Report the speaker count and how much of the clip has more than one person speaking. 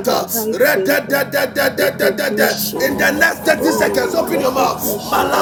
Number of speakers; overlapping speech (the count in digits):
2, about 41%